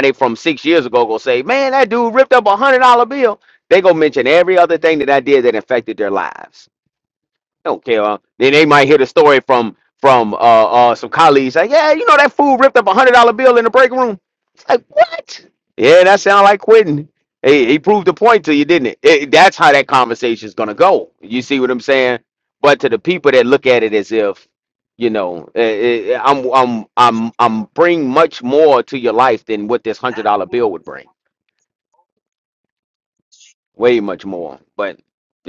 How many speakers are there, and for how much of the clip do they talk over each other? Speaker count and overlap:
one, no overlap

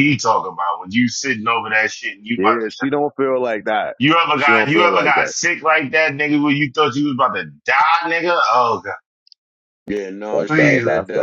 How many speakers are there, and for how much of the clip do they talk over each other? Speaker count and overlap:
three, about 21%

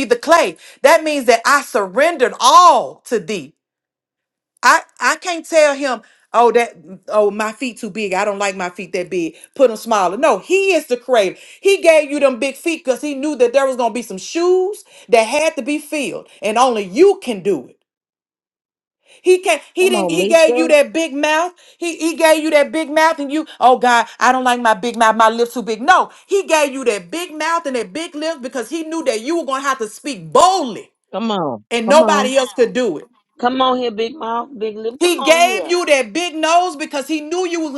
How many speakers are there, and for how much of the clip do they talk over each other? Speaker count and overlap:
three, about 6%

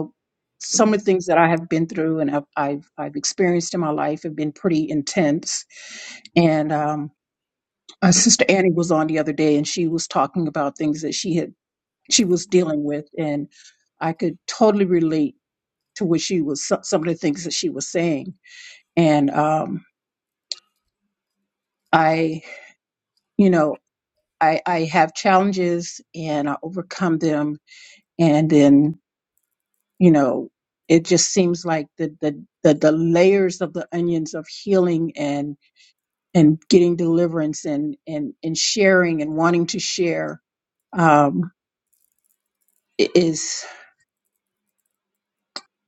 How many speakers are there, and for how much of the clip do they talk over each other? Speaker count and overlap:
one, no overlap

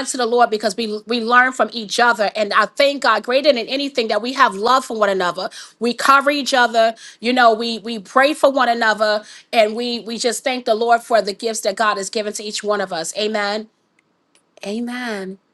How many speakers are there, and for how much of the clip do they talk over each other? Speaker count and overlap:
one, no overlap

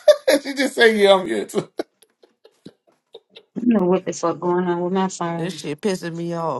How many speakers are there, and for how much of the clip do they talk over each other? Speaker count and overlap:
three, about 3%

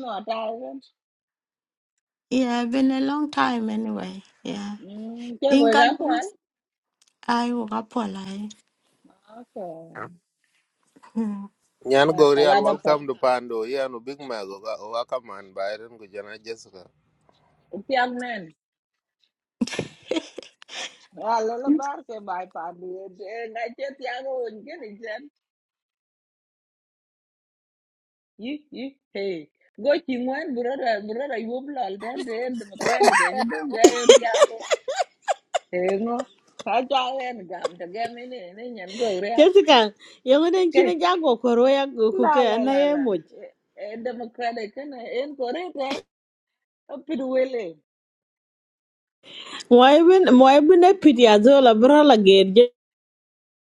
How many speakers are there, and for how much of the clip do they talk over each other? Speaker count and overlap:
four, about 5%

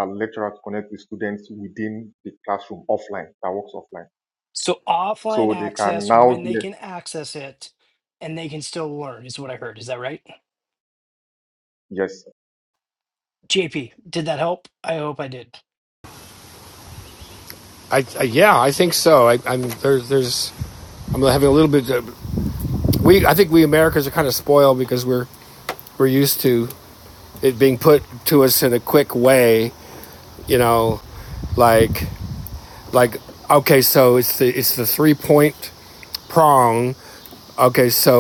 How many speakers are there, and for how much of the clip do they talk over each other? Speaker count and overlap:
three, about 3%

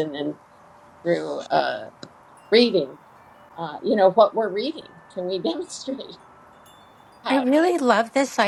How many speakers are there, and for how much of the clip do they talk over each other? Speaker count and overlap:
two, about 2%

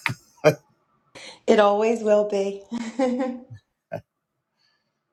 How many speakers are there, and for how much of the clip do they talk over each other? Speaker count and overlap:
one, no overlap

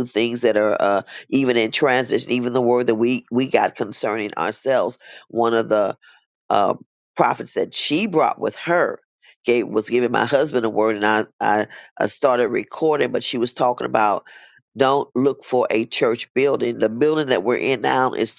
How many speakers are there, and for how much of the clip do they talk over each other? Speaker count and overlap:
one, no overlap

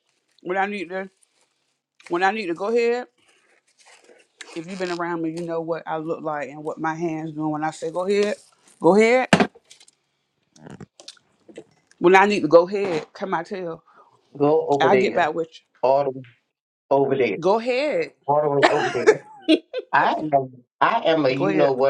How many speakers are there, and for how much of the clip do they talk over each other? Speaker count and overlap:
two, about 4%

